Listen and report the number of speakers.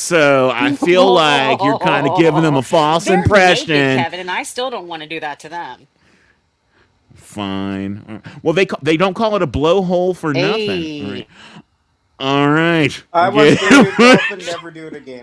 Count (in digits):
3